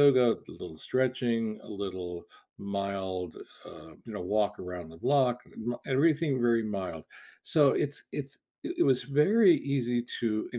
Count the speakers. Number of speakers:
1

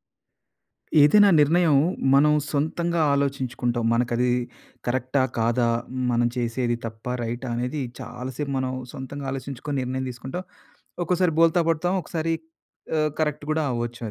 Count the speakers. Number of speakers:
1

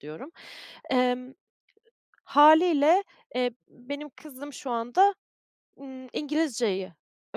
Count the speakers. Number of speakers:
1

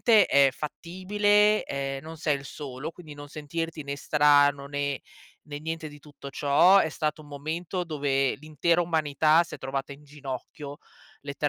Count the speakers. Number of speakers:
1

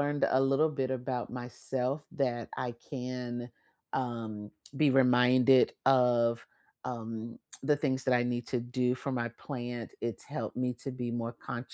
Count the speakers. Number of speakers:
1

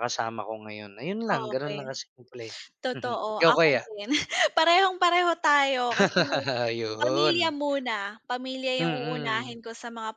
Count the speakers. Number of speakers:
2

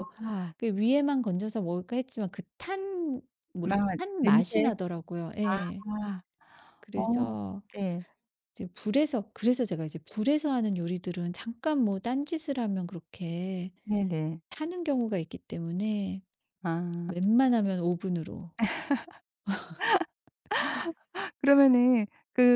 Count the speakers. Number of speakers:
2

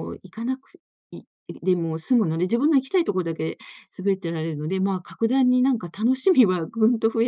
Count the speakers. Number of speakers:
1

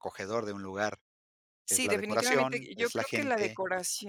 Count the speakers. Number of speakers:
2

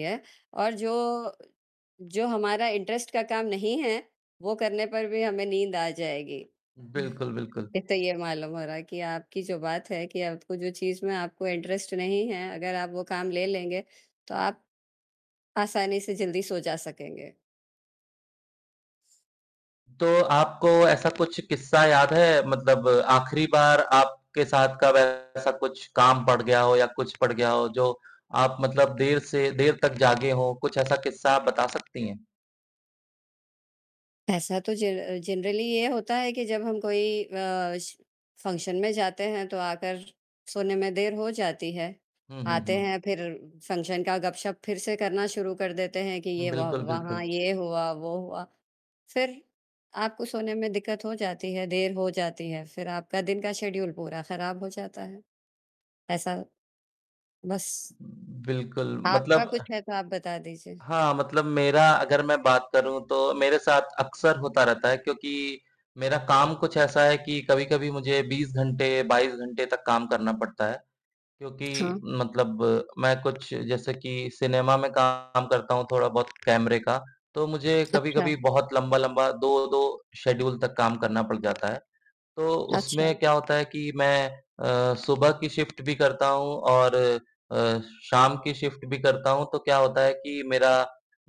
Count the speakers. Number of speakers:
2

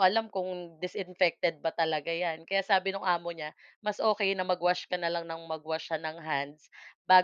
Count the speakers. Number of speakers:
1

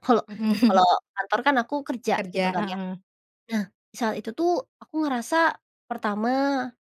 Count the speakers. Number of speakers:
2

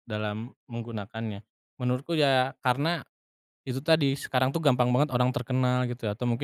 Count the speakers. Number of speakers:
1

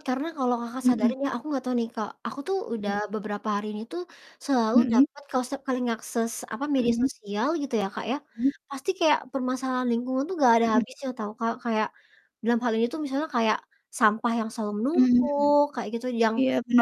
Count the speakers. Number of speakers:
2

